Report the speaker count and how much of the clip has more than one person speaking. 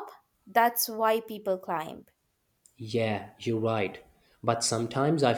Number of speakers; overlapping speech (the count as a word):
two, no overlap